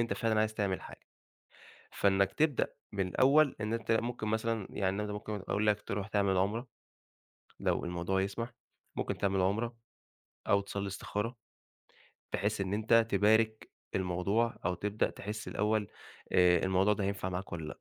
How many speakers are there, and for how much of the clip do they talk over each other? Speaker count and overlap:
1, no overlap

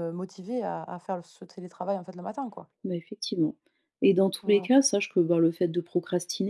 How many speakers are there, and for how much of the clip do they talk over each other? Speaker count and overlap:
2, about 4%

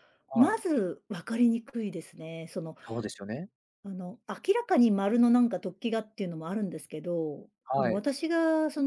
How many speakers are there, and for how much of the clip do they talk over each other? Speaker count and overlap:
2, about 5%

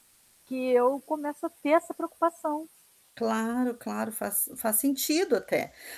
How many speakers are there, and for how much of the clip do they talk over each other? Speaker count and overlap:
2, no overlap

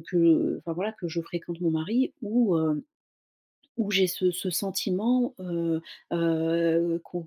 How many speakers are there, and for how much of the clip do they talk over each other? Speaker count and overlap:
1, no overlap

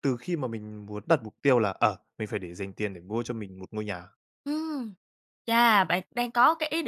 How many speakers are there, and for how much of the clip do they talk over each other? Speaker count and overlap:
2, no overlap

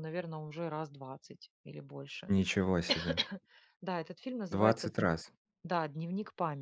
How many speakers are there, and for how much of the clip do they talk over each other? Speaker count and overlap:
2, about 8%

